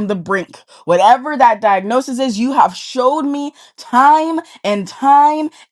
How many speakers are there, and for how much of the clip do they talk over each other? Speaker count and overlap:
1, no overlap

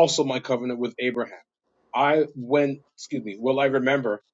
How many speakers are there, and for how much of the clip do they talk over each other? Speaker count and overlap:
1, no overlap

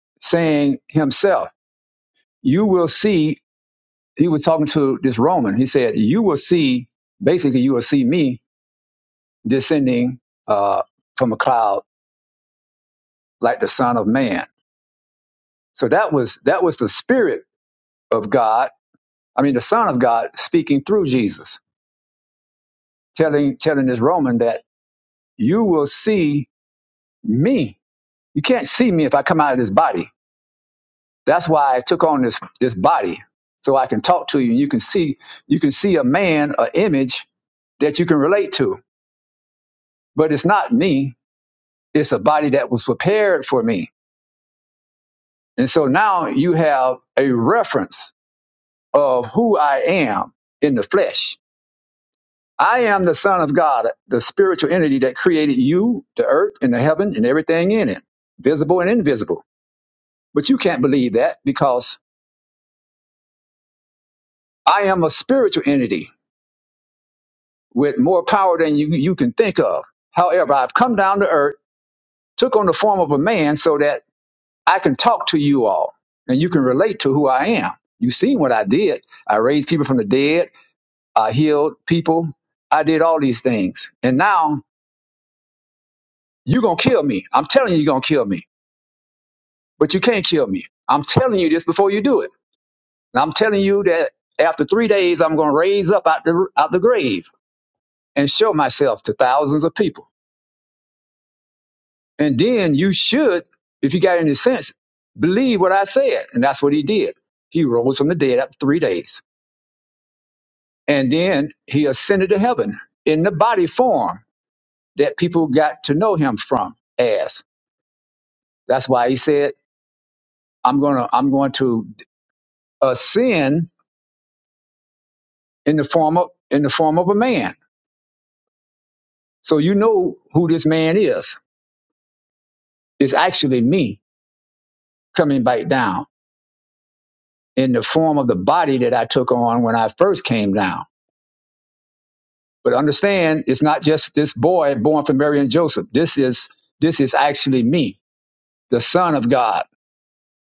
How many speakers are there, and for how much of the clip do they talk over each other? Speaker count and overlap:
1, no overlap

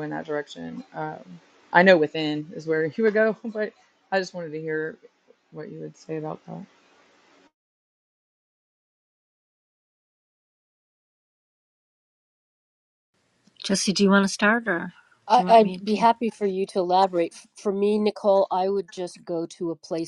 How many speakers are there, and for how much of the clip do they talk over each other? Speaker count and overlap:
3, about 3%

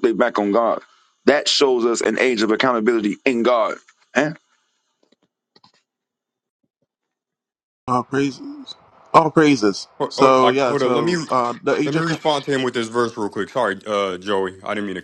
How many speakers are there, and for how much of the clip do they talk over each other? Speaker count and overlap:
3, about 9%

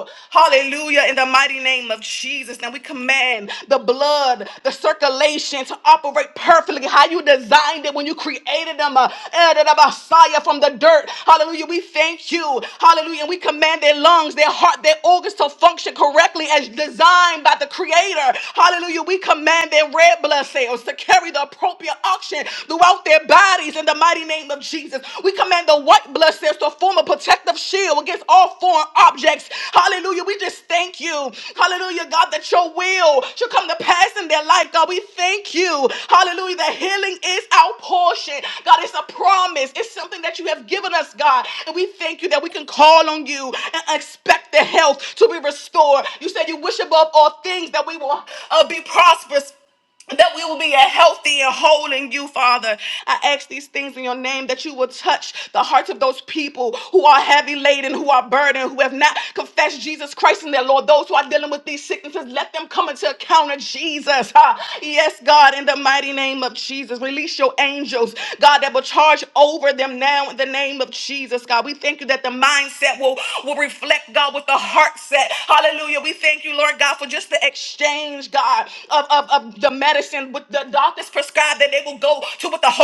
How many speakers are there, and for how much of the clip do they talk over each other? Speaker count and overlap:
1, no overlap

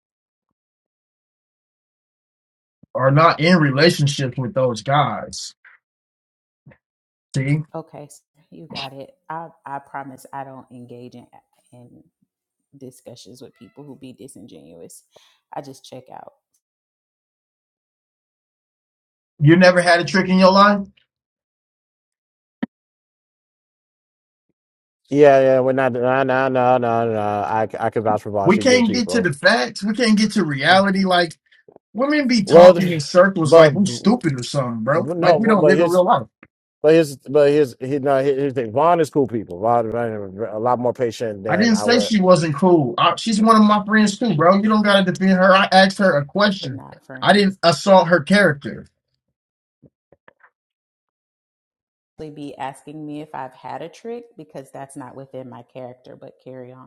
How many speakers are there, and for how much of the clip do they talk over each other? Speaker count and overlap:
3, about 6%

